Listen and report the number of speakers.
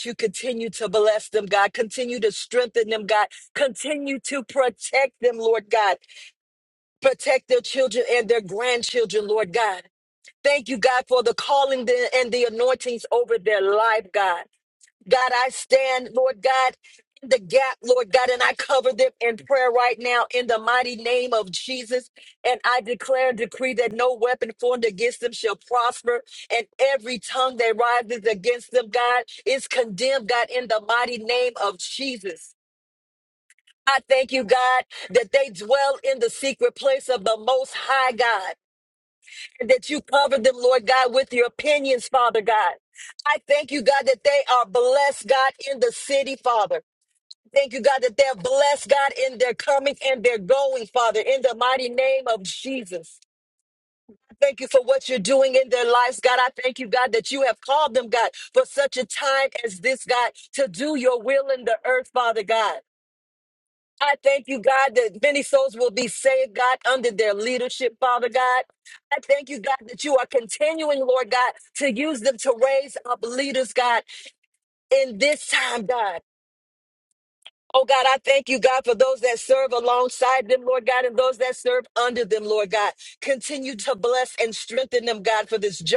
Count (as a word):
one